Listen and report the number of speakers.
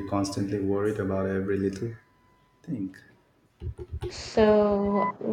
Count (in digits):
2